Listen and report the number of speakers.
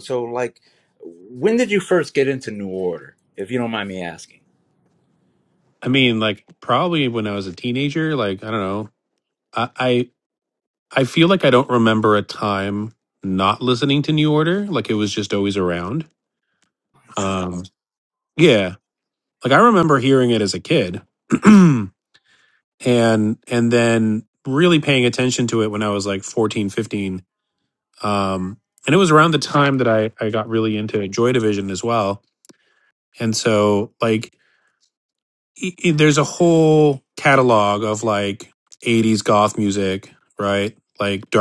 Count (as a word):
two